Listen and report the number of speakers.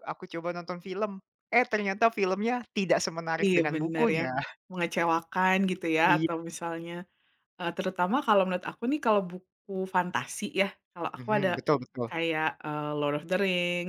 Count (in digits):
2